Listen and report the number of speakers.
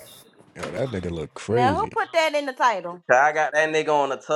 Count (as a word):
three